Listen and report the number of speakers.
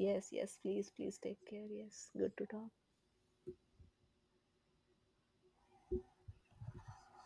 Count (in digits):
1